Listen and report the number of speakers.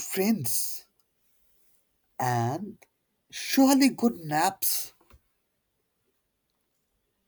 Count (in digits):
1